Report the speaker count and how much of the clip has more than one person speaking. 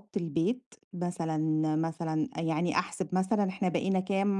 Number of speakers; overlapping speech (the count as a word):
one, no overlap